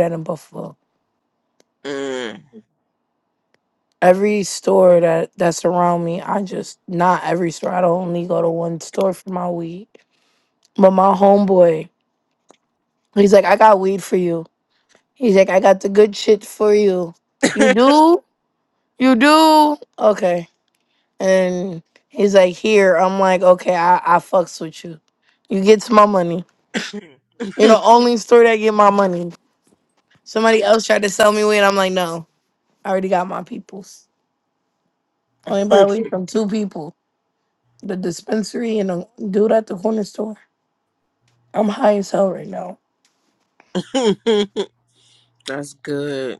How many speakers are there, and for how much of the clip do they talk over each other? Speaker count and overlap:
two, no overlap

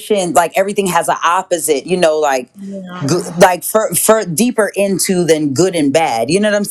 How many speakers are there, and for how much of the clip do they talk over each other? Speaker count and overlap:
one, no overlap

